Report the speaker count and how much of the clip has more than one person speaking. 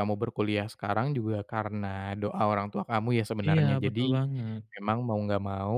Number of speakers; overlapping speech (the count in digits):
2, about 13%